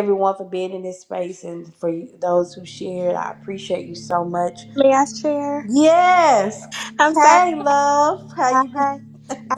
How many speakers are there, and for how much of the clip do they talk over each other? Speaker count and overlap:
2, about 7%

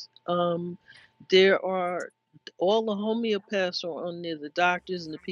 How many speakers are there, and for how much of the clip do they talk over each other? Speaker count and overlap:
1, no overlap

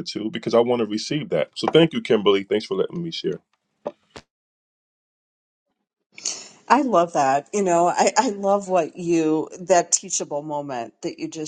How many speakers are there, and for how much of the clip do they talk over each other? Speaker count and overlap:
2, no overlap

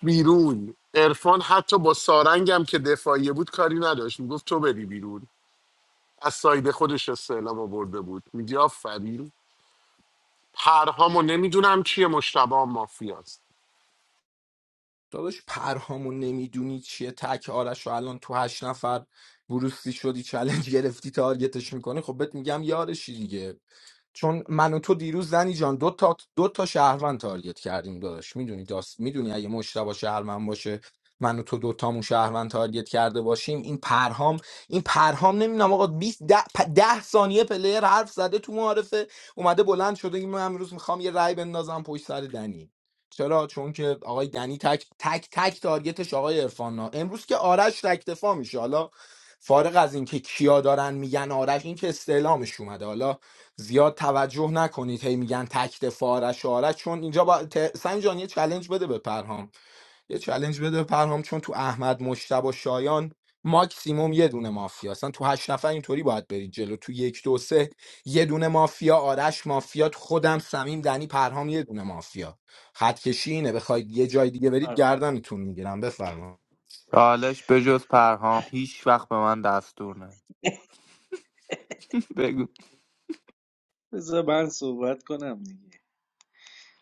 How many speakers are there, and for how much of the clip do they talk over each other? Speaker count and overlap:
4, under 1%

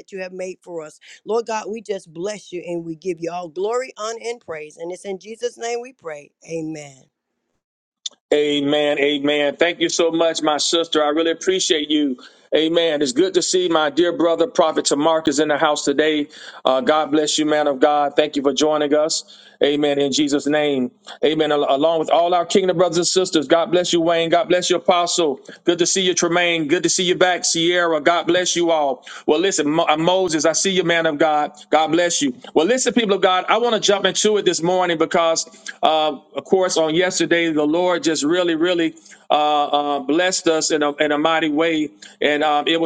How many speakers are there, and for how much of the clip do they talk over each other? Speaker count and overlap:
2, no overlap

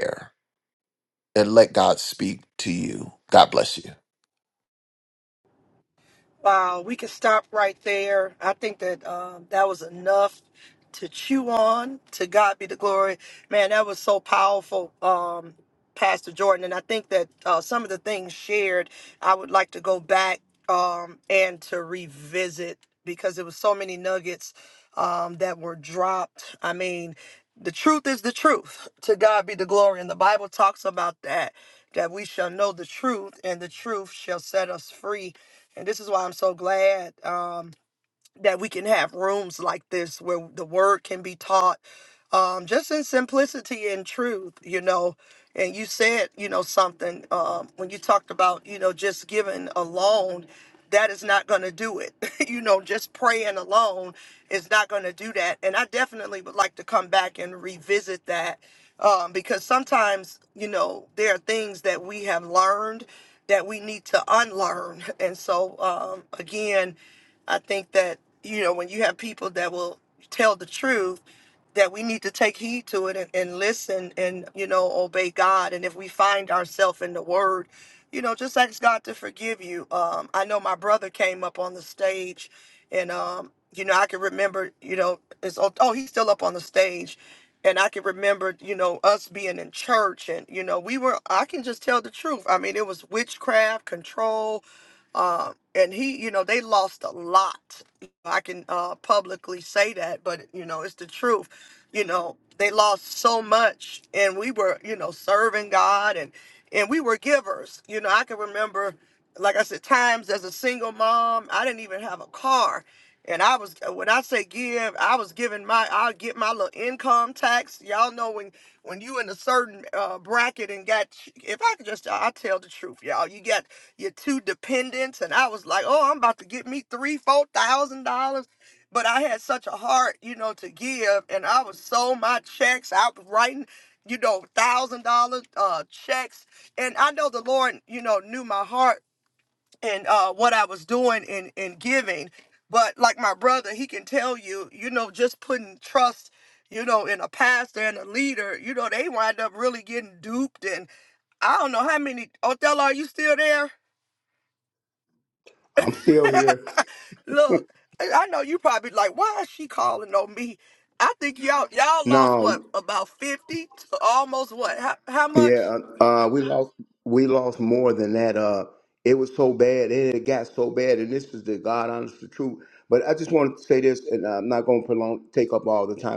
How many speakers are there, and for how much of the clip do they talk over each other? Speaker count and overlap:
3, under 1%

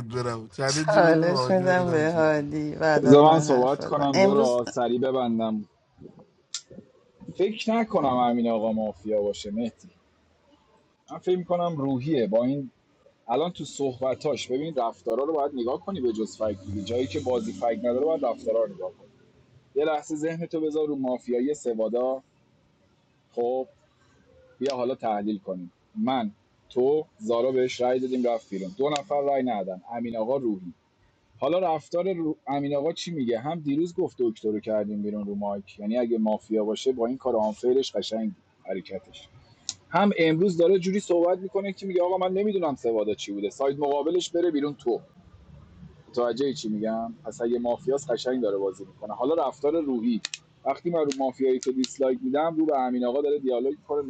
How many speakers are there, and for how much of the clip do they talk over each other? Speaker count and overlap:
3, about 6%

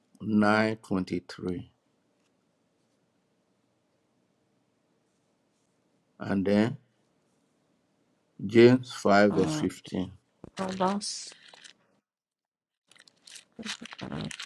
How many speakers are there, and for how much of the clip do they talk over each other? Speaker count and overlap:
2, about 3%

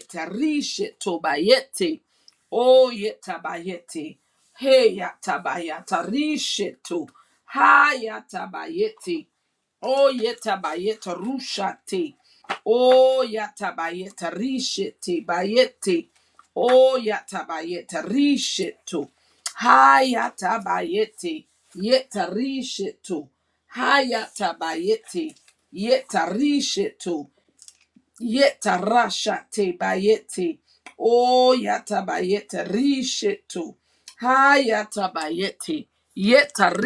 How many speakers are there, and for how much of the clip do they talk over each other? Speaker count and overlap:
1, no overlap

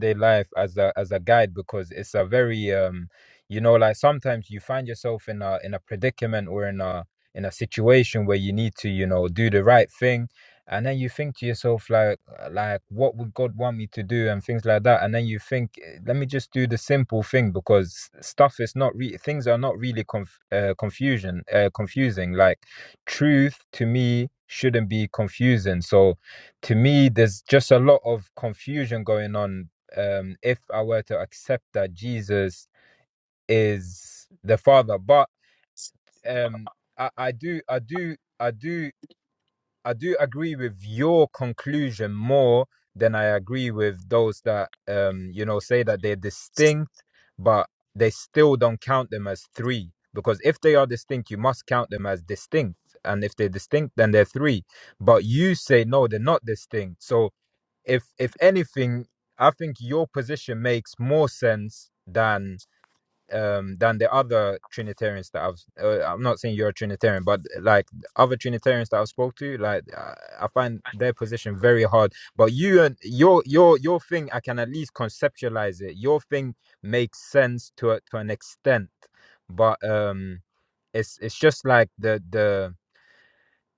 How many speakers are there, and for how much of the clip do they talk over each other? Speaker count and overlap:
1, no overlap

